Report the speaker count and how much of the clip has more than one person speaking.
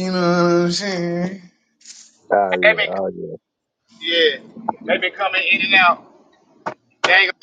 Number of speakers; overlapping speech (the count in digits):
3, about 4%